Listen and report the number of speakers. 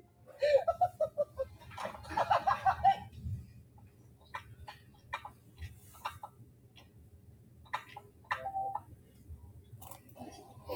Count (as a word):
zero